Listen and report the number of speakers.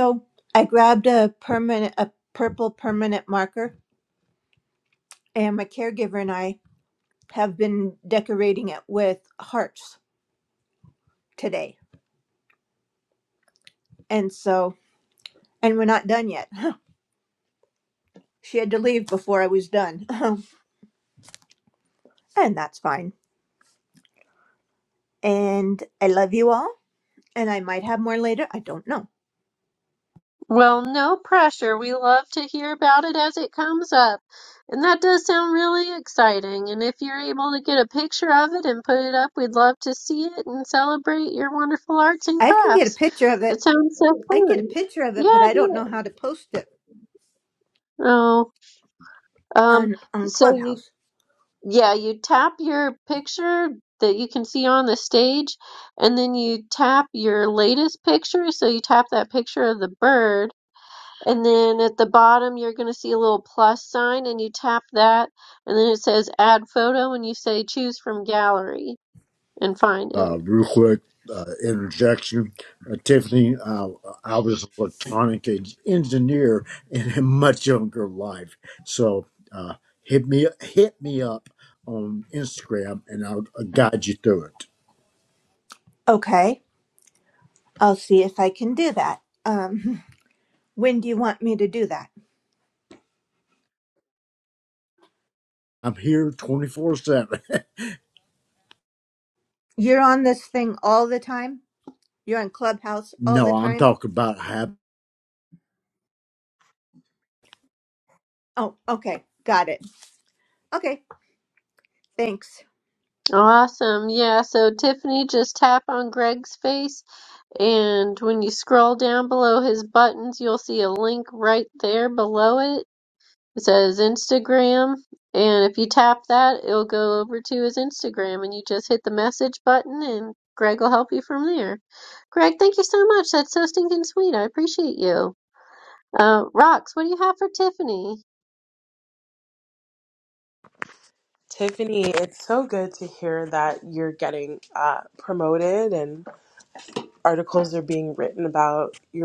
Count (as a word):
four